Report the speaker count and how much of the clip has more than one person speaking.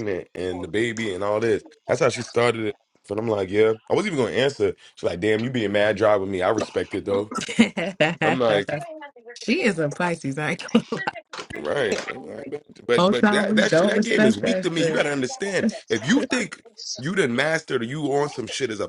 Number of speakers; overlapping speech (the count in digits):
2, about 12%